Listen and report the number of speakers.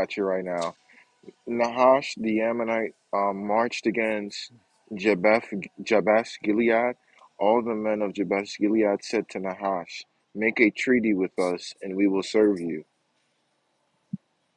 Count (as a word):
one